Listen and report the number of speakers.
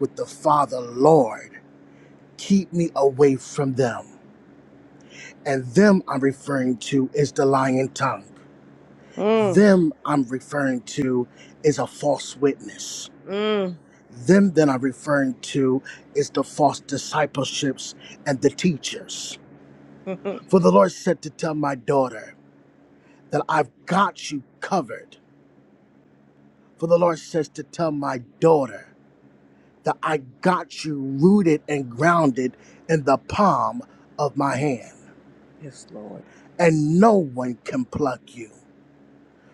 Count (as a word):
two